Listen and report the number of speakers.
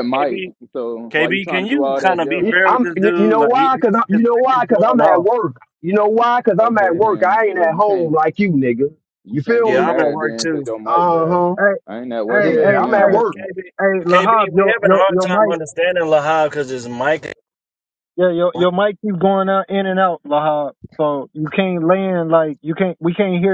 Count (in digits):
4